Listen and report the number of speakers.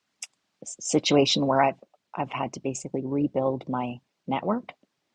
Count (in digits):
1